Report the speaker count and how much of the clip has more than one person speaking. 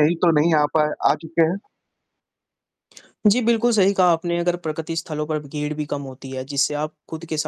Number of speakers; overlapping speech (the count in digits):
2, no overlap